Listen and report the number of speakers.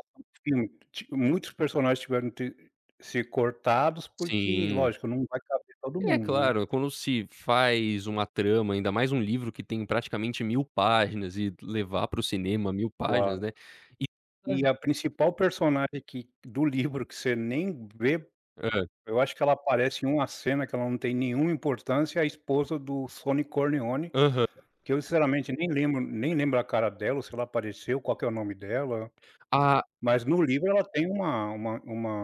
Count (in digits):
2